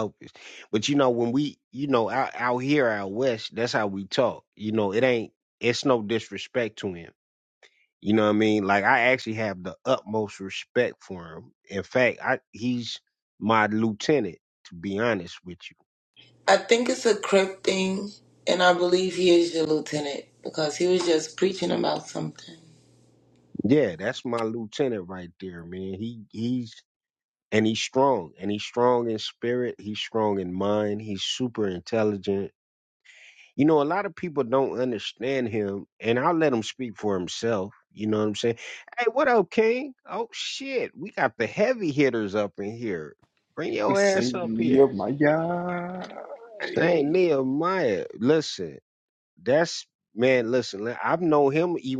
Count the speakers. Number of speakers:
3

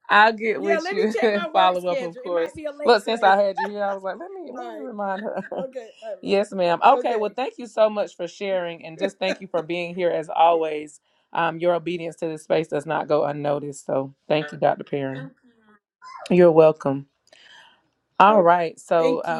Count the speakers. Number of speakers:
2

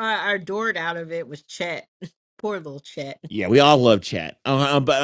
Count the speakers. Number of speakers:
2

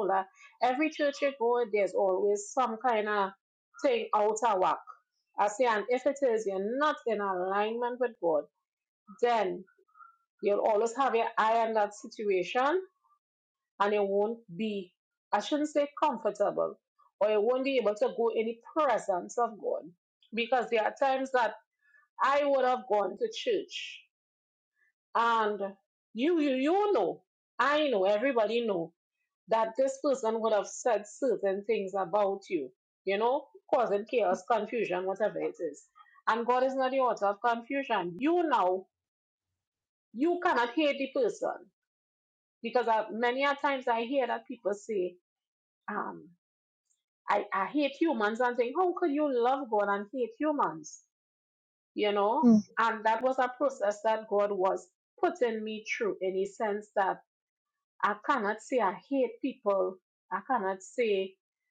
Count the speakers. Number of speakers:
1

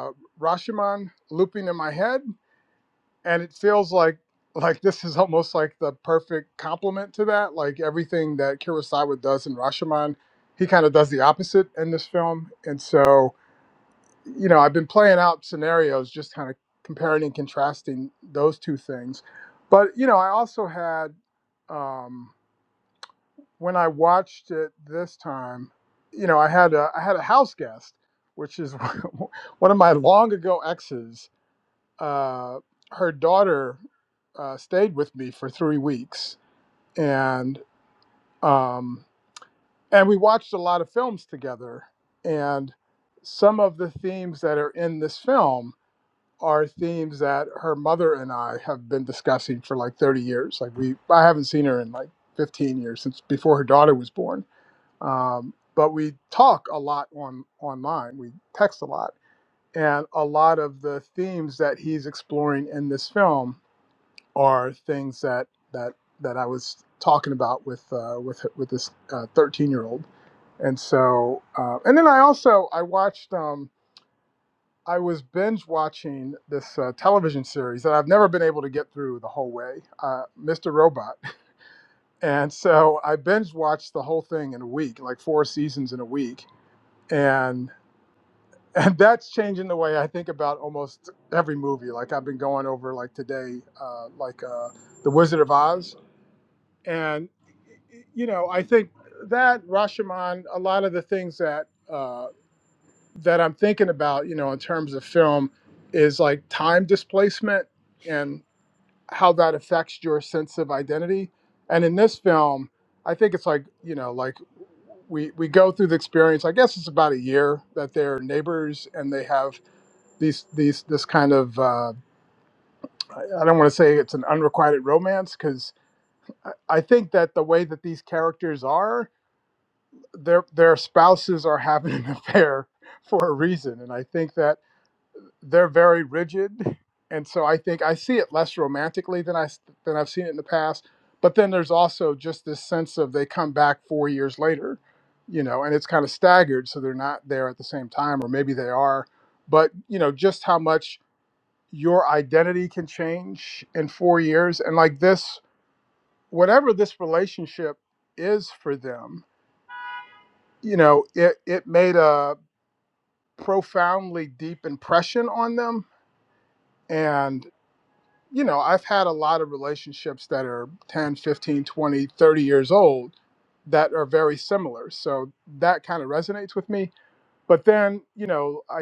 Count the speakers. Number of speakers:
1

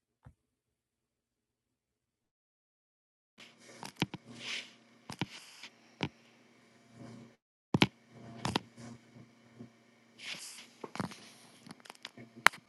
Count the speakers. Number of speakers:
0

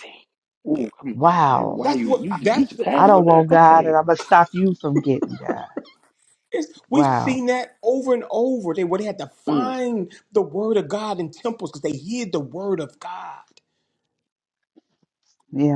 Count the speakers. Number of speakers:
3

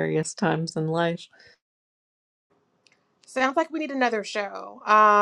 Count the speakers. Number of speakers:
2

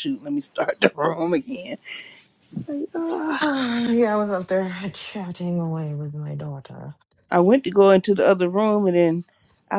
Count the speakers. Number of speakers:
2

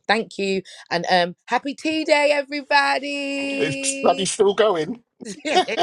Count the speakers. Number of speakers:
2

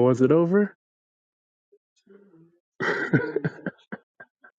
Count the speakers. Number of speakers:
1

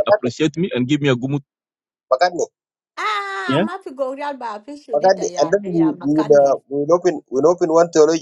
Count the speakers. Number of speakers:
3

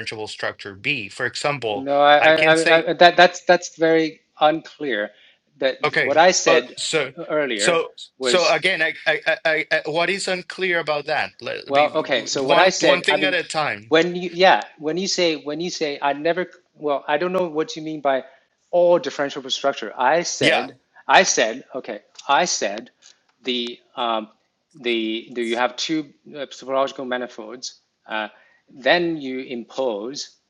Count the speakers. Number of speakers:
2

